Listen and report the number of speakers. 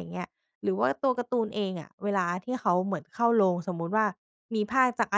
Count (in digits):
1